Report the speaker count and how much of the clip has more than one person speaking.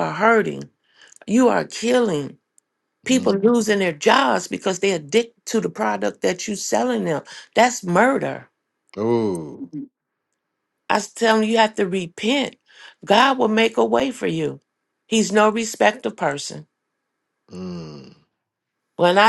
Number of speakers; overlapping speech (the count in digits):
2, about 2%